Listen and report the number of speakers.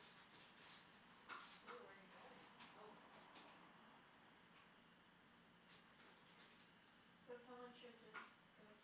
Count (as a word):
two